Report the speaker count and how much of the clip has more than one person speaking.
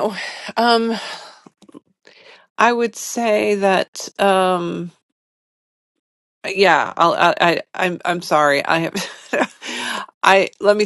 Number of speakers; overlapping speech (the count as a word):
one, no overlap